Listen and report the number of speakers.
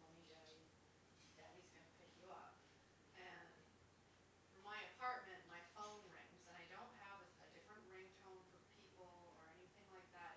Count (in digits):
1